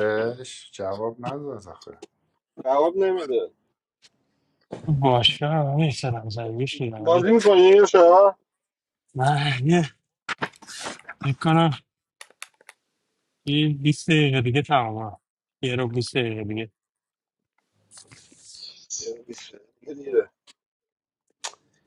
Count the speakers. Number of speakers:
3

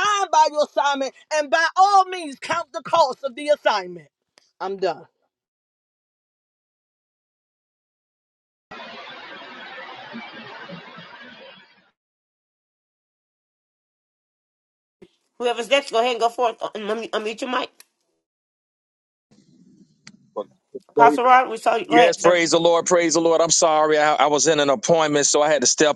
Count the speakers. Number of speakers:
3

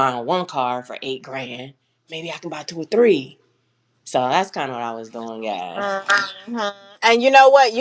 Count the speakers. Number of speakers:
2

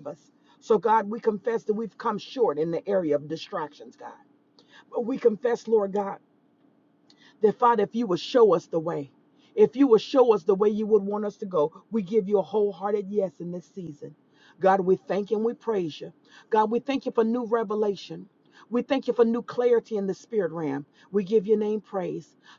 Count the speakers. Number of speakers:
1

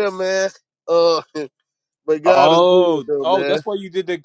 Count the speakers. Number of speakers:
2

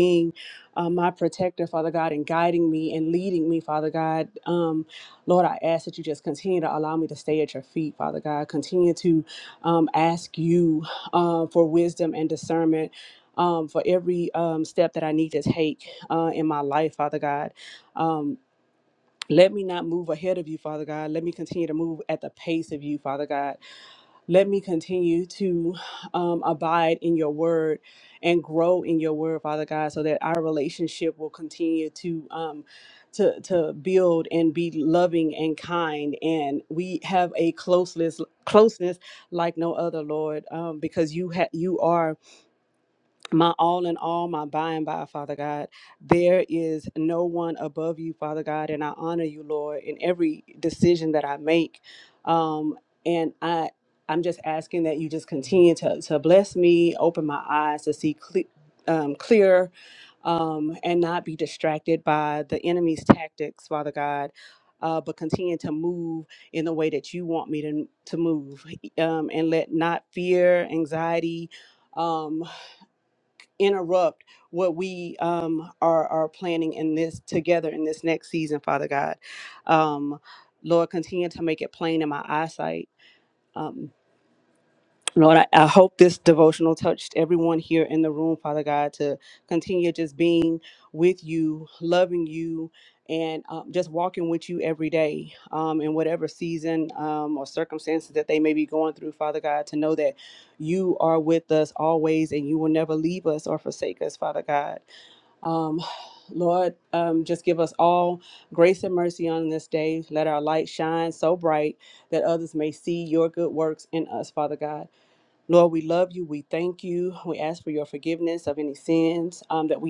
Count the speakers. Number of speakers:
1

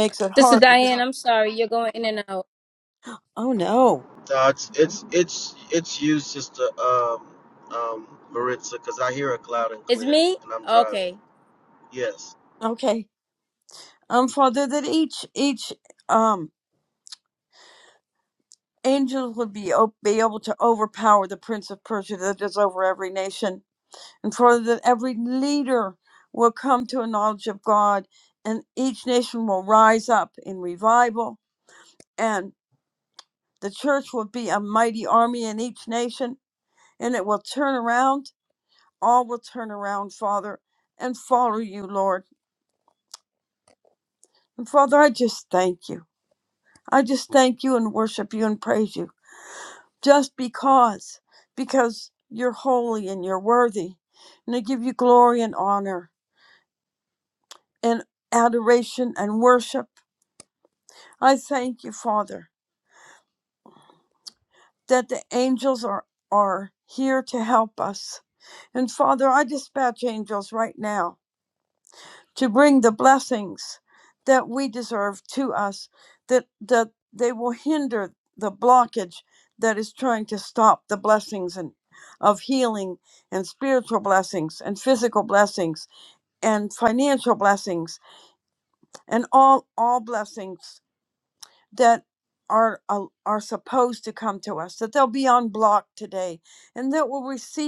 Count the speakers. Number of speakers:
3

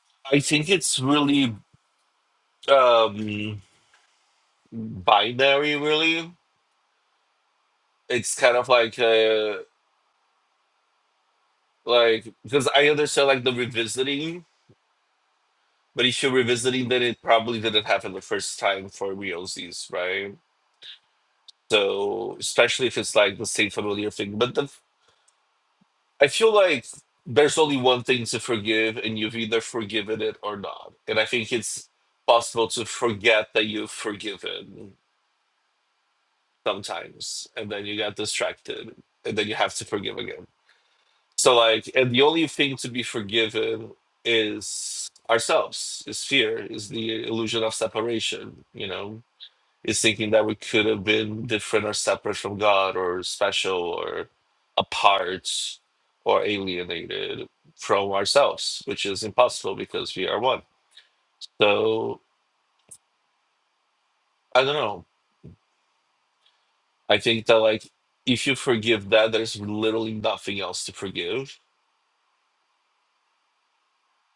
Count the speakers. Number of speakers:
1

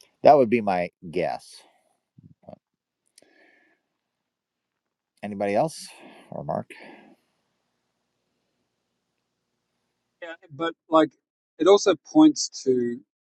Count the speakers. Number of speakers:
2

